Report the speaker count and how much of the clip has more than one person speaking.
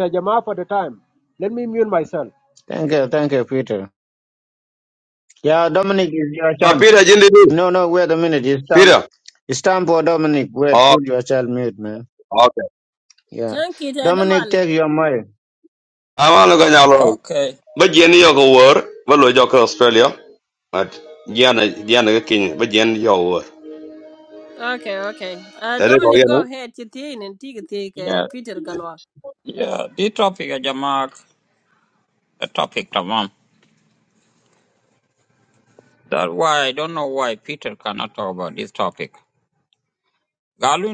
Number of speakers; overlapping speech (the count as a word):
five, about 6%